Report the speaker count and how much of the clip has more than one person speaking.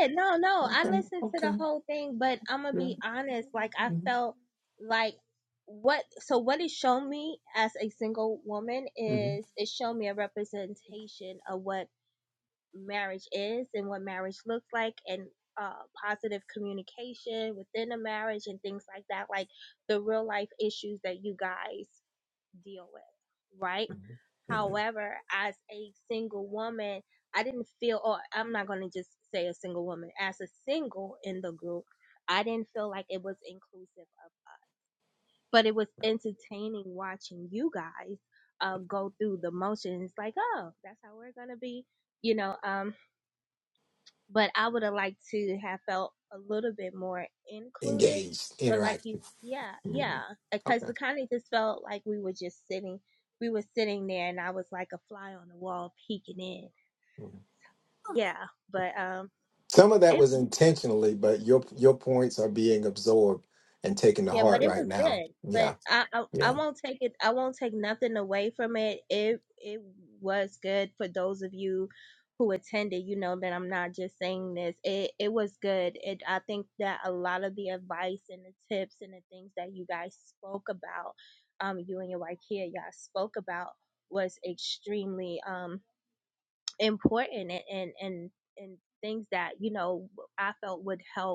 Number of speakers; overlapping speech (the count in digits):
2, about 5%